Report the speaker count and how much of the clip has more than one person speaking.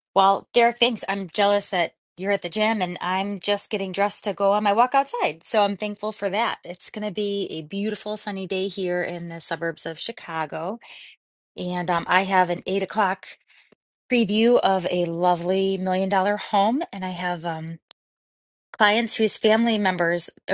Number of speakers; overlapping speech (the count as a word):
one, no overlap